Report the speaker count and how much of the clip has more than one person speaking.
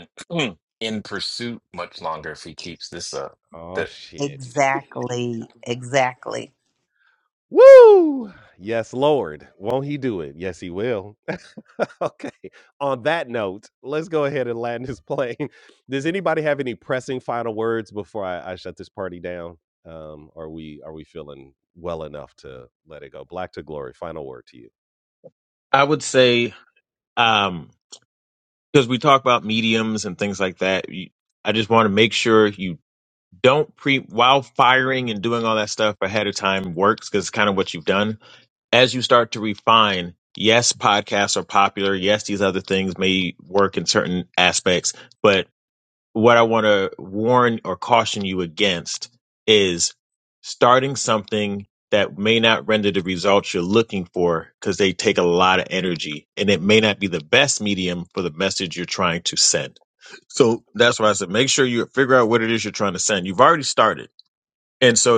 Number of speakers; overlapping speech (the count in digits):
4, under 1%